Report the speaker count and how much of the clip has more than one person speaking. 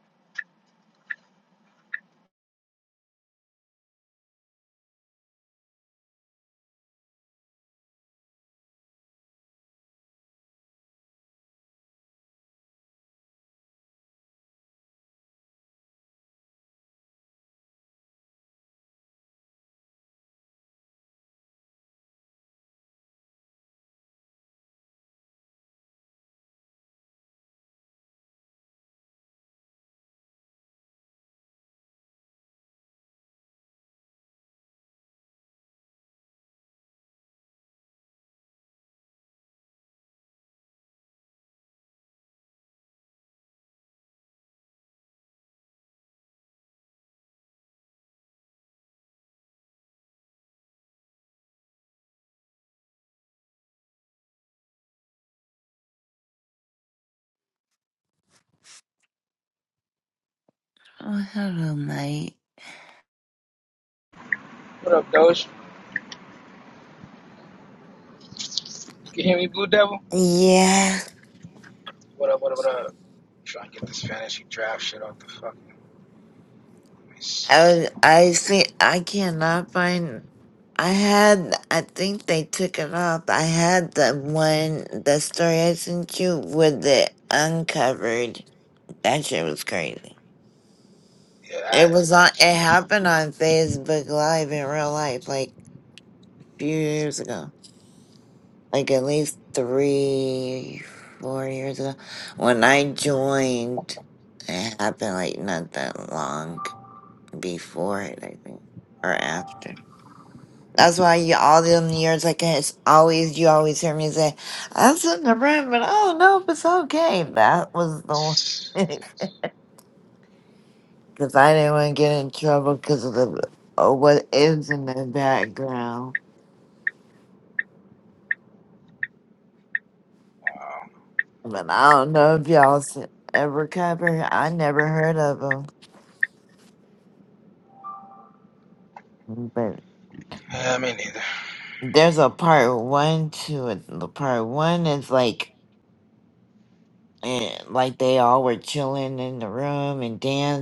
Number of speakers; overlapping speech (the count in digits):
2, under 1%